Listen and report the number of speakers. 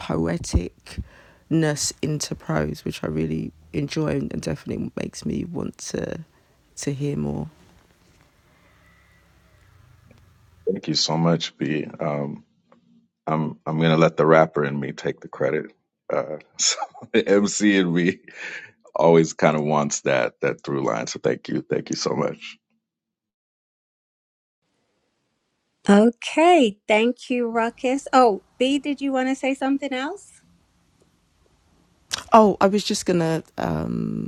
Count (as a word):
three